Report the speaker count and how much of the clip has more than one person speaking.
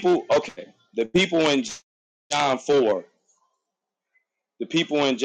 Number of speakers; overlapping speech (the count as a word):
one, no overlap